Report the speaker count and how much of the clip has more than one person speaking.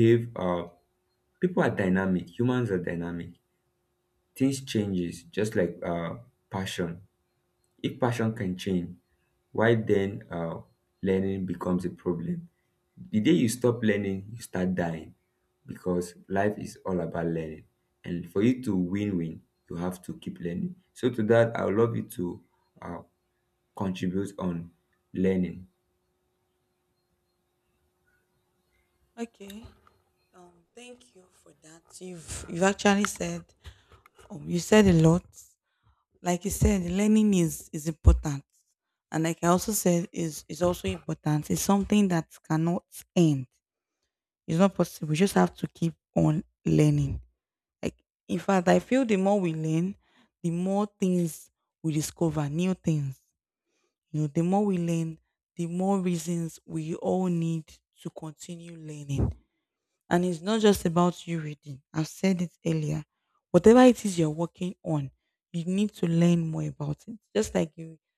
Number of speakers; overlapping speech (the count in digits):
2, no overlap